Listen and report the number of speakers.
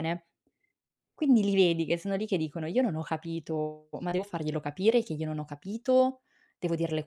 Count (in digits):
1